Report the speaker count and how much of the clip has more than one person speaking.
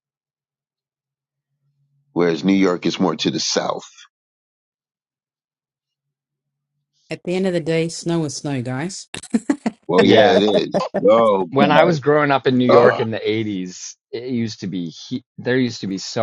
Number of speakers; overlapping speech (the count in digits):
3, about 7%